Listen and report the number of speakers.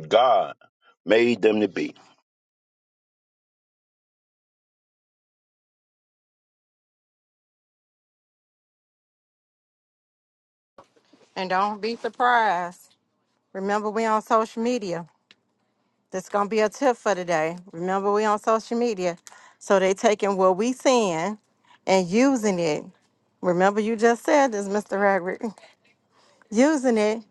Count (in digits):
2